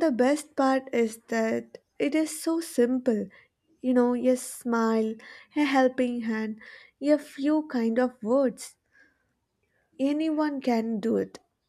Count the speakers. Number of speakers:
1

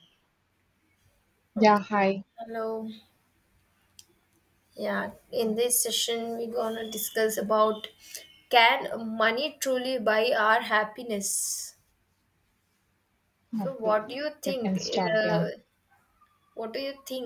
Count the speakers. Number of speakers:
2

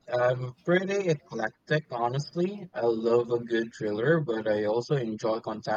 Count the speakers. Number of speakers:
1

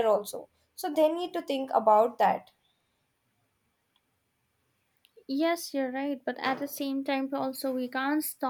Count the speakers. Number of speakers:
2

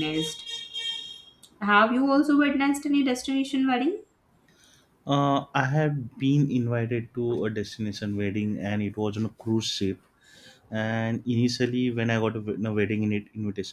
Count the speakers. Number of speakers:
2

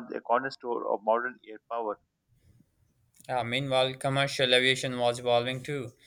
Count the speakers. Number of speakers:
2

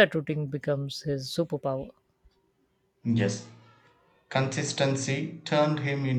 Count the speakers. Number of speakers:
2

